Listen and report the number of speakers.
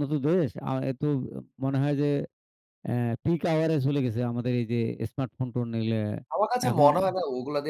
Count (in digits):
2